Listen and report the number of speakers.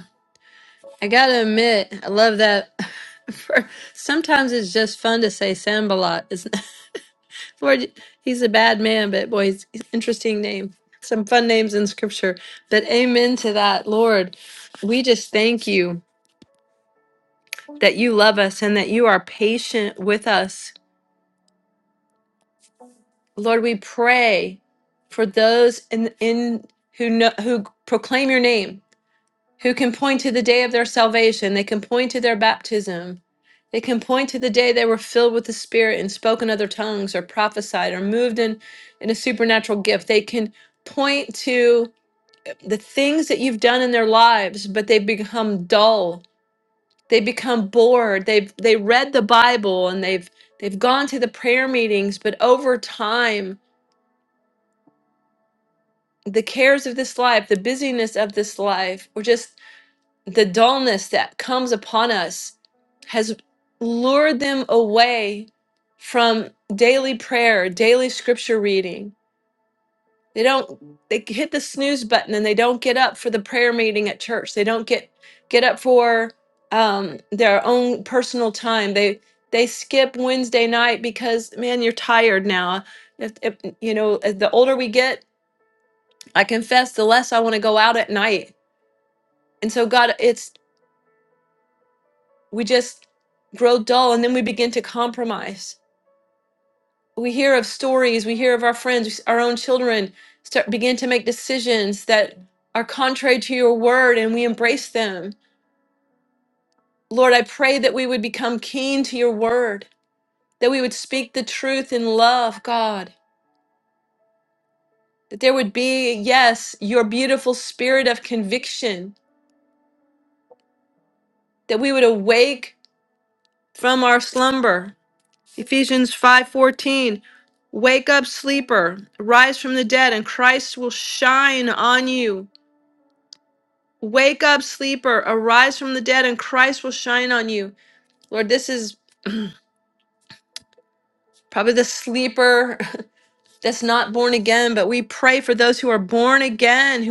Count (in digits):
1